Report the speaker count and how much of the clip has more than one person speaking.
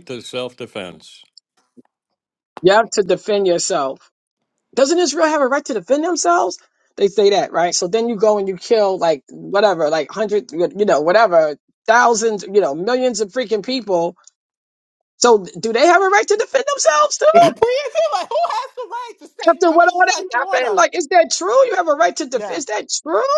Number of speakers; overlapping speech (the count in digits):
3, about 7%